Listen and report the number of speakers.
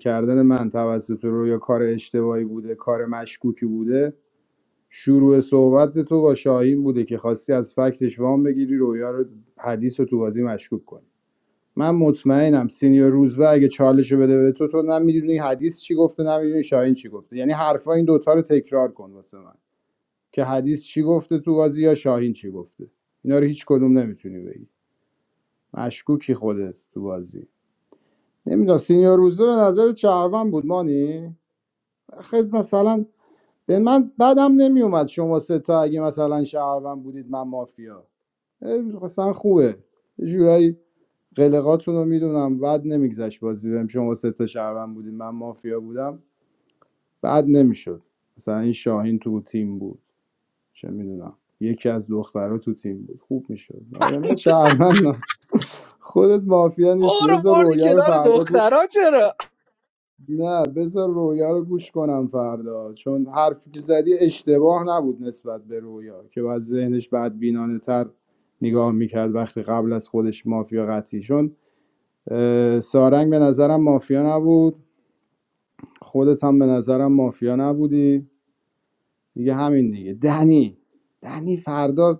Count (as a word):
two